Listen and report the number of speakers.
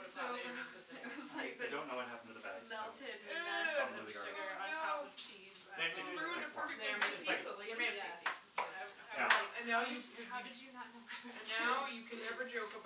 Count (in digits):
4